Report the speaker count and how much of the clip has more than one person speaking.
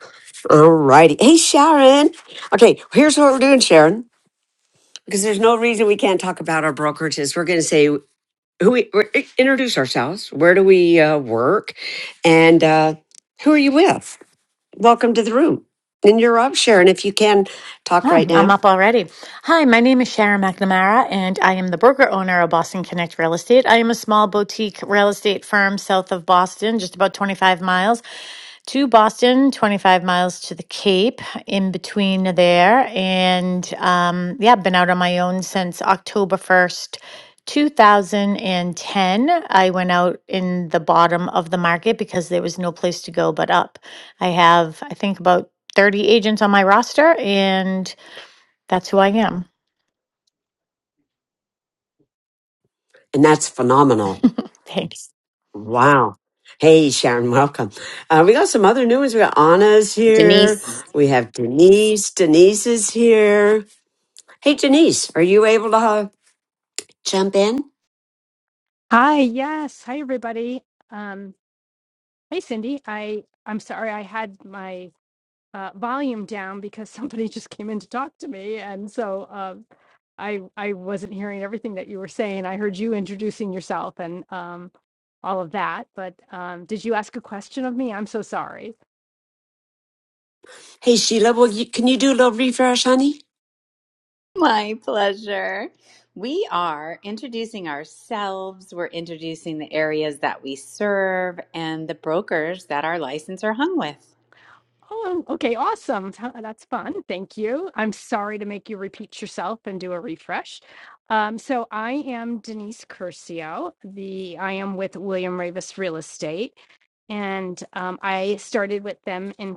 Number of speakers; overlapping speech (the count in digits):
4, about 1%